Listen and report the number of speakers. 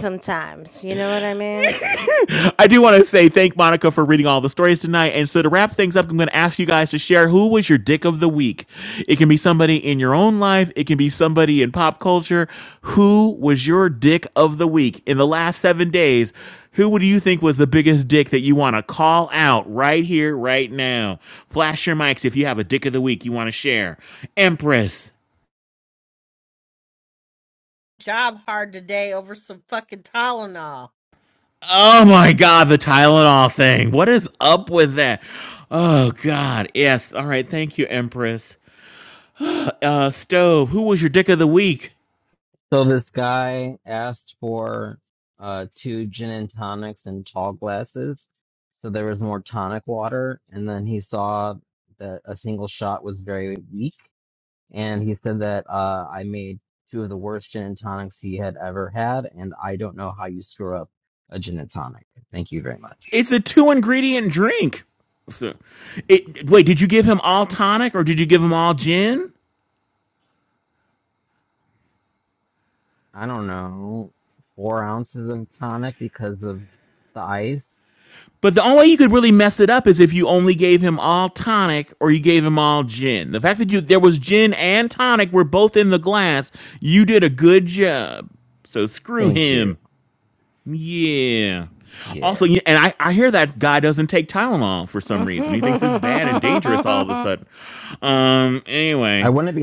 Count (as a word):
four